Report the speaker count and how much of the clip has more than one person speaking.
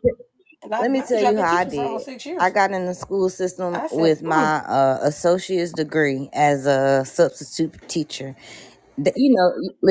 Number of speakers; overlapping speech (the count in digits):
2, about 21%